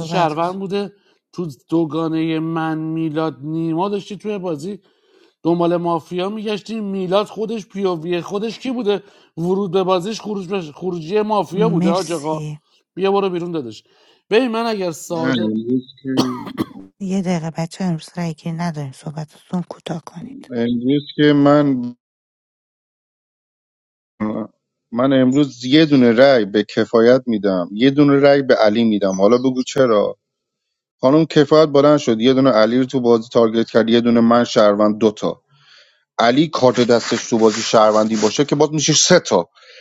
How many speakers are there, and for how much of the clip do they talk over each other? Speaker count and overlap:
three, about 5%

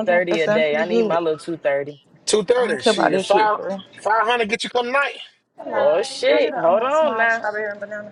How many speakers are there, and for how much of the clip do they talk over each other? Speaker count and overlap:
three, about 51%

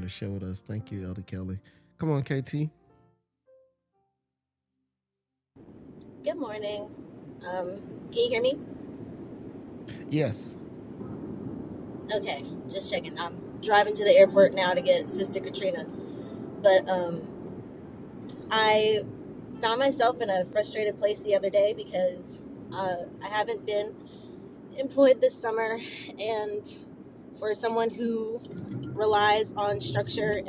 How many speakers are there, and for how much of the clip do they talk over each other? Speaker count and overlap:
two, no overlap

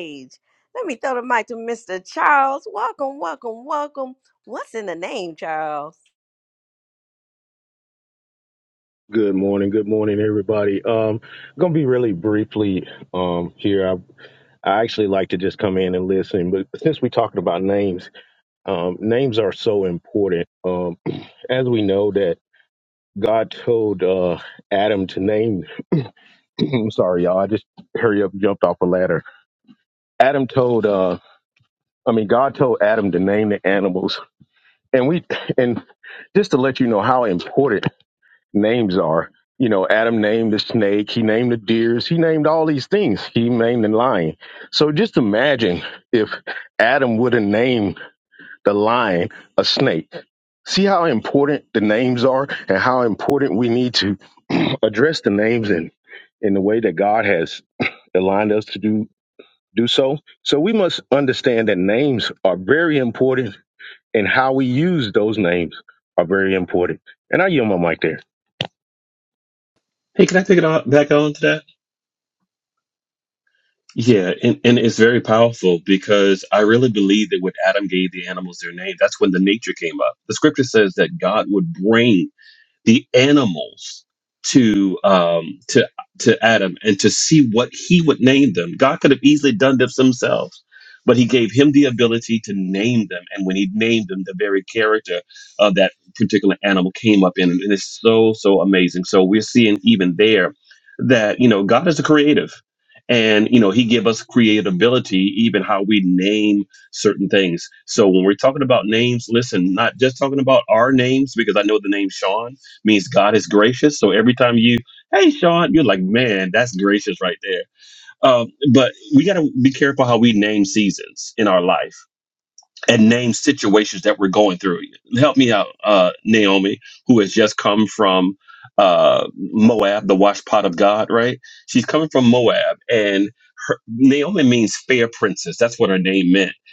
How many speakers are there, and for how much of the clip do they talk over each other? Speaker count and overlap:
three, no overlap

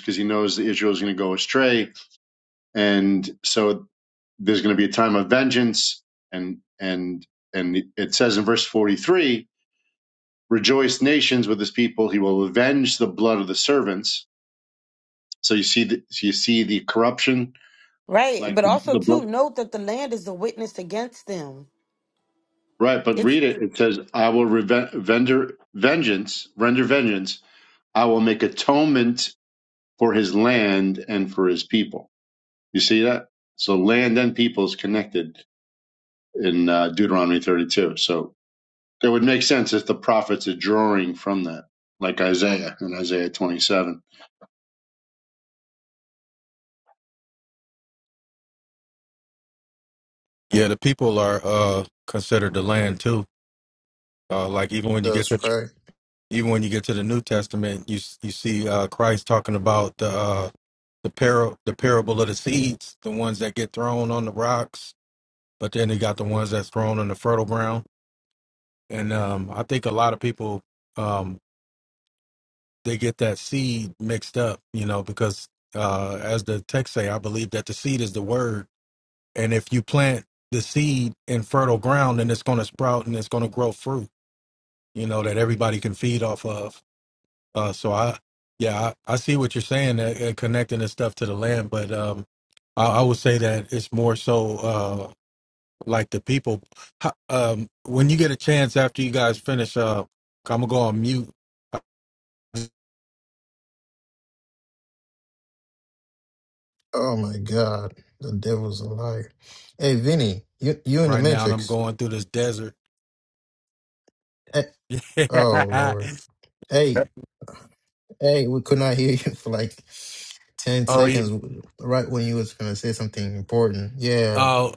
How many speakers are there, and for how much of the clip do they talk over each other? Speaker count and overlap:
four, about 2%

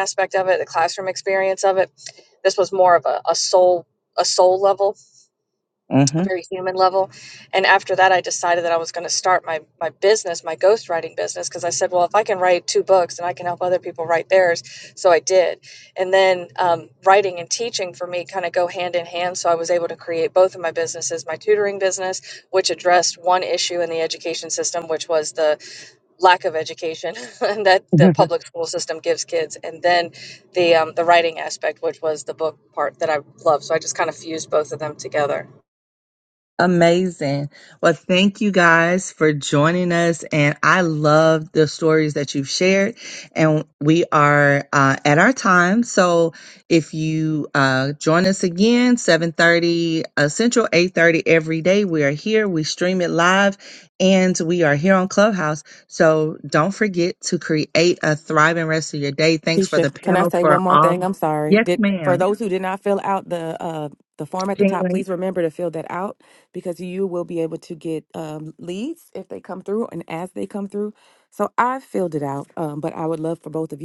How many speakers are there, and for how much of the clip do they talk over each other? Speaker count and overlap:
three, about 4%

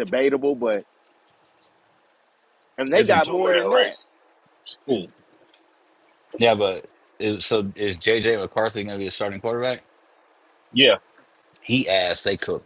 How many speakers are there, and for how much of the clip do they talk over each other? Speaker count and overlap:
three, about 8%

